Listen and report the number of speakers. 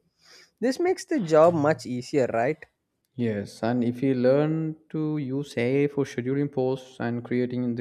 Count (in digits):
2